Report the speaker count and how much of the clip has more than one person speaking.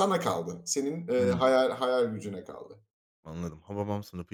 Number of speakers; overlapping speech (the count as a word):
two, about 6%